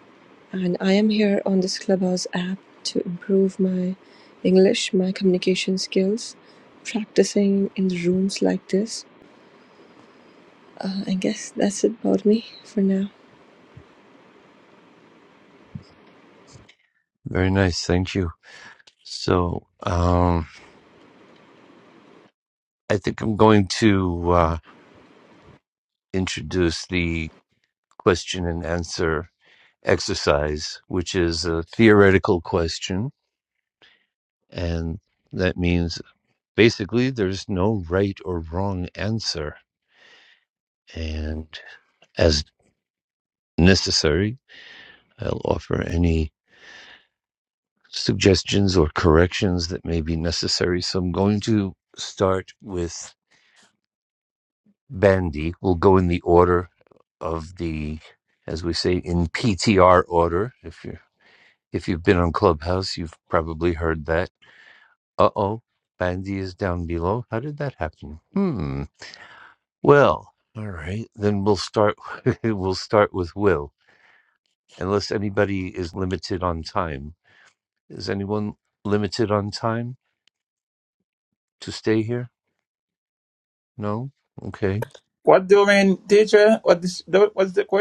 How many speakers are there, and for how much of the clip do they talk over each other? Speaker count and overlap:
3, no overlap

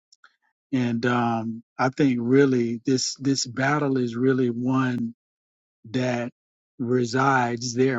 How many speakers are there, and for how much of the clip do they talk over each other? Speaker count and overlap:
1, no overlap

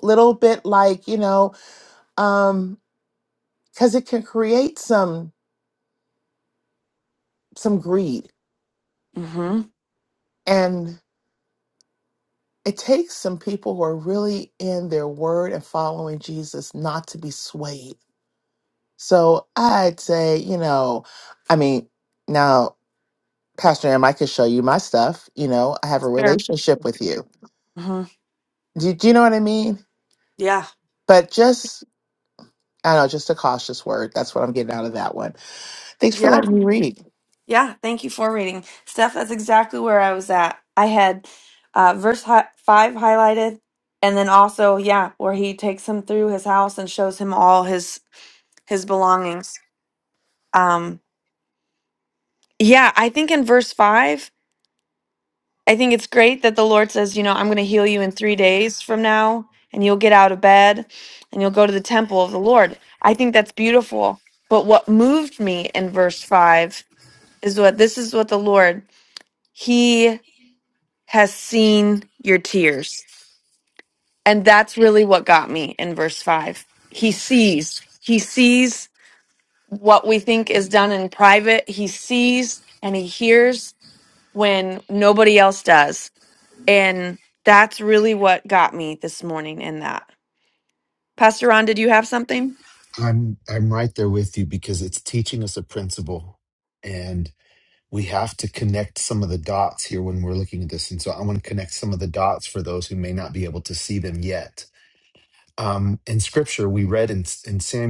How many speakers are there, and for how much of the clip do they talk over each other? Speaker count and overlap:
3, under 1%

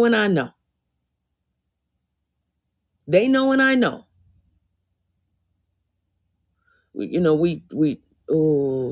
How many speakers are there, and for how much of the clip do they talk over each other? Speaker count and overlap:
1, no overlap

